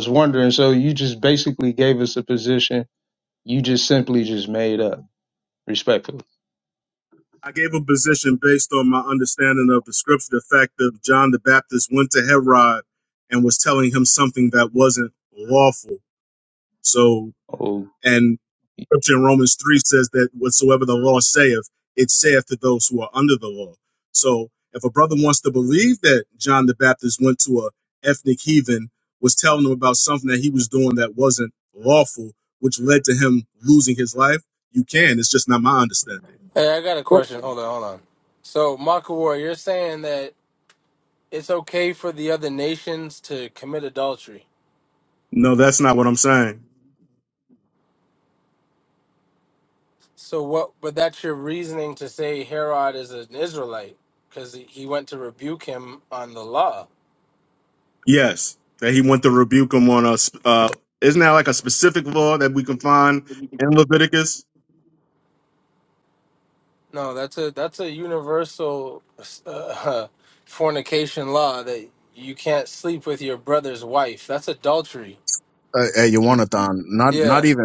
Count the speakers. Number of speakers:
four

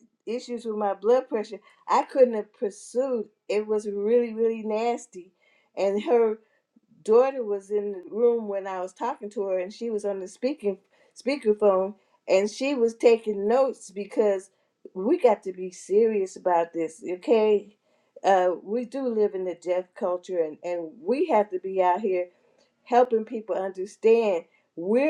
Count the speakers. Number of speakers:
one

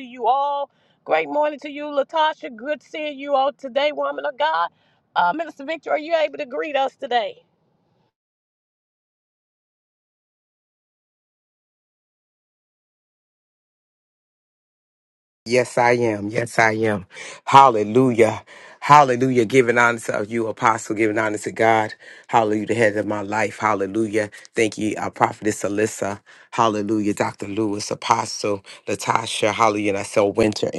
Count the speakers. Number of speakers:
two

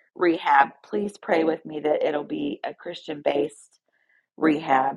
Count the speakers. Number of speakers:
one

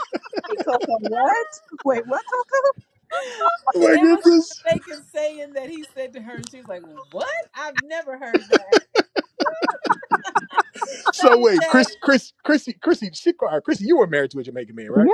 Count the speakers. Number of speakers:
three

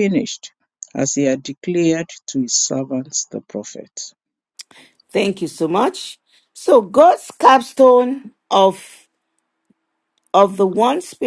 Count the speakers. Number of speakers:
two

